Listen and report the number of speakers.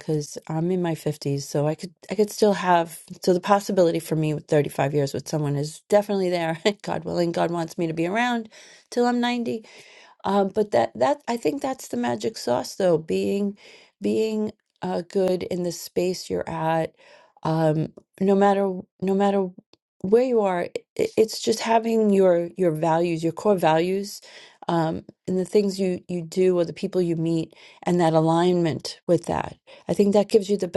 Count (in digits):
1